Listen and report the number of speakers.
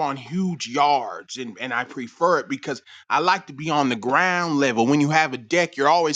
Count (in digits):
1